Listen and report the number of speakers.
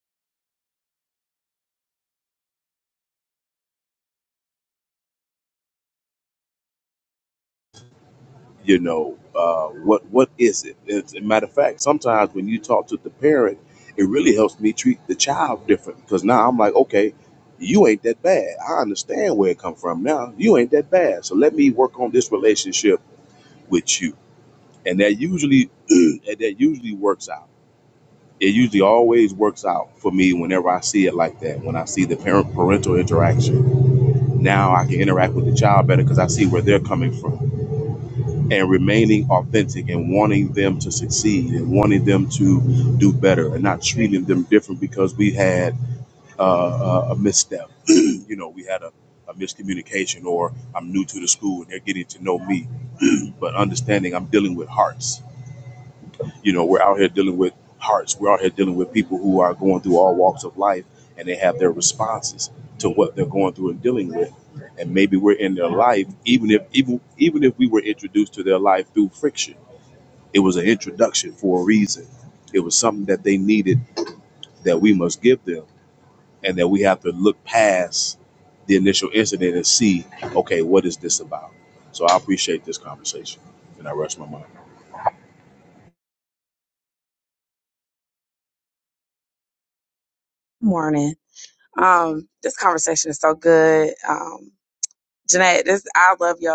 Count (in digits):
2